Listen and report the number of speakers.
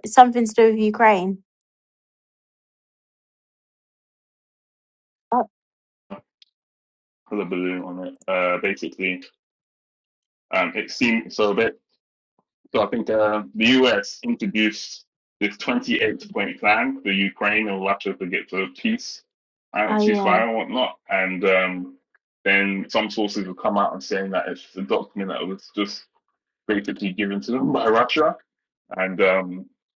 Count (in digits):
2